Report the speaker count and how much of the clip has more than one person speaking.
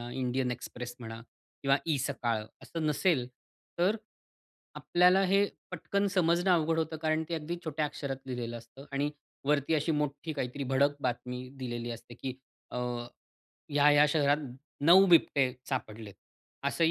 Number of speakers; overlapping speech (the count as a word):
one, no overlap